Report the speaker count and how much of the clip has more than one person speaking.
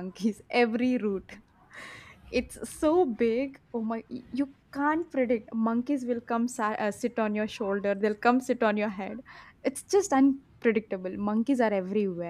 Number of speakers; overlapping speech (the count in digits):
1, no overlap